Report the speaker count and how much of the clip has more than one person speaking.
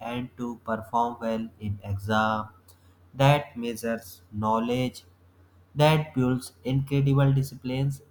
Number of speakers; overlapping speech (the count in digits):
1, no overlap